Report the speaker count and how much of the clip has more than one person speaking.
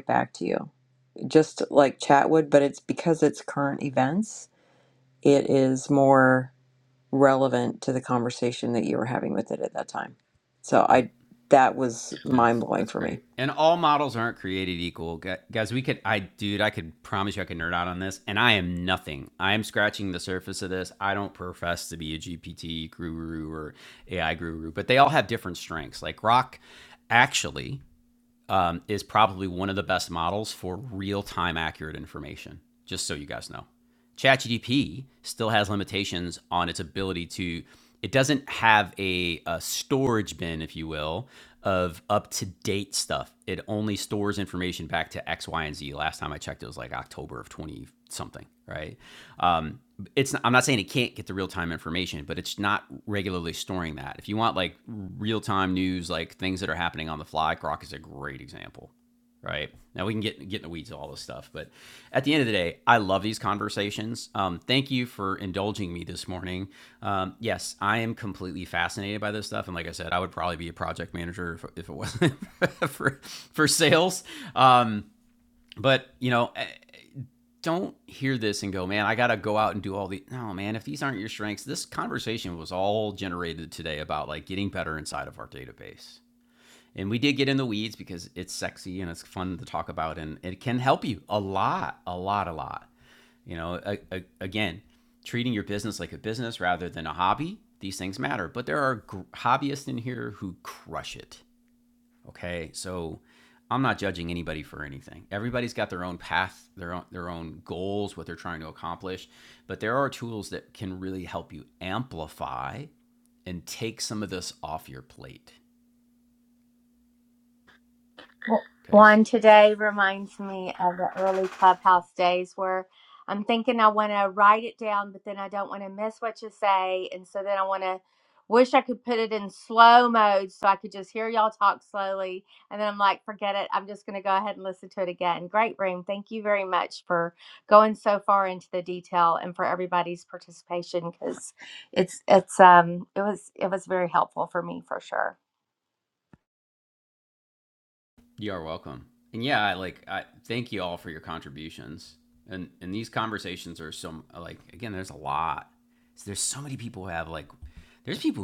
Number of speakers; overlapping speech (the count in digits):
3, about 1%